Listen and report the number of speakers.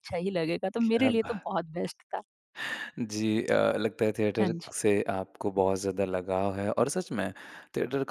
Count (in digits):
2